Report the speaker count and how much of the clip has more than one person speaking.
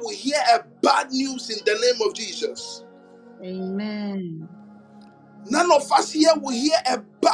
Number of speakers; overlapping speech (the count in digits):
2, no overlap